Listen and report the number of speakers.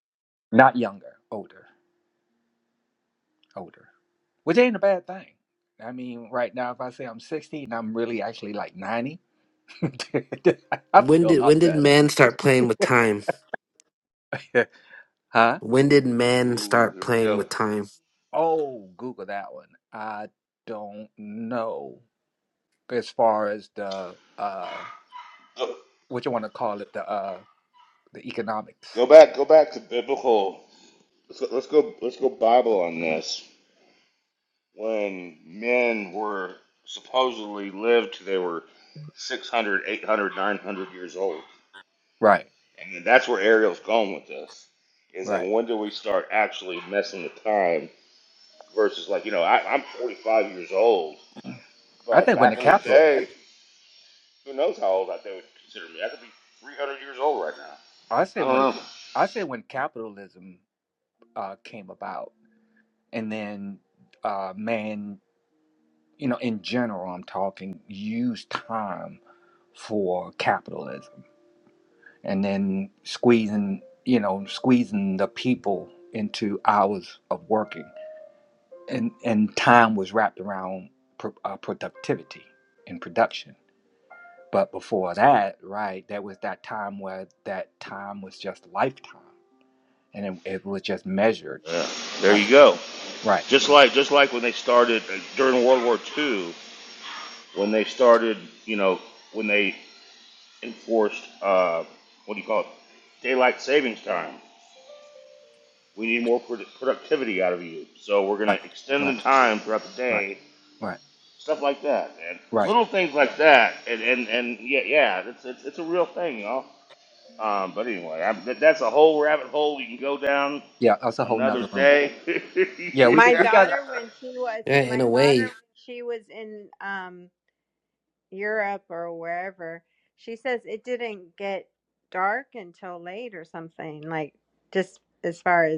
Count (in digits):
4